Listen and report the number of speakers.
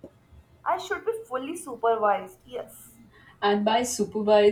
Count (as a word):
two